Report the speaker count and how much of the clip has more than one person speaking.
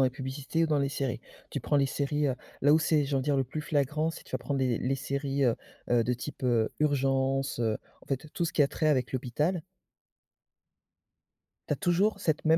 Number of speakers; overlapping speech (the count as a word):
one, no overlap